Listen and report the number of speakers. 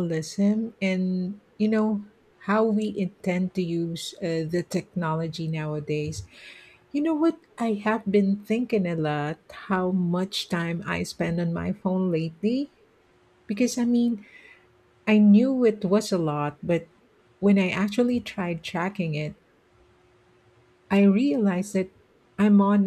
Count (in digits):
1